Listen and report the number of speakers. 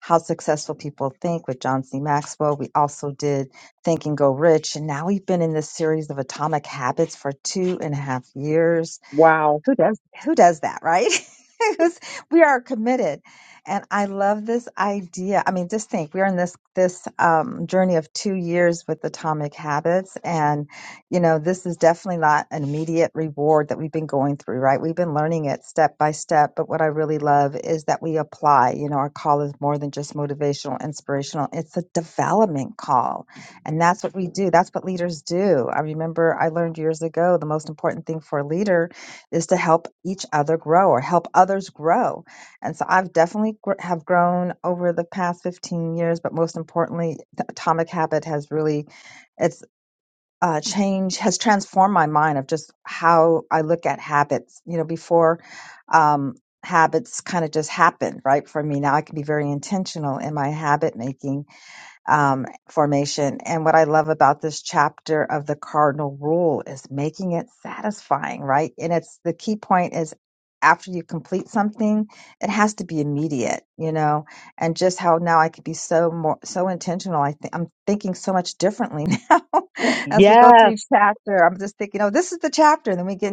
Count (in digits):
2